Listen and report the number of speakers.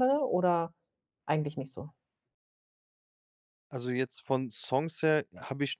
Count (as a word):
two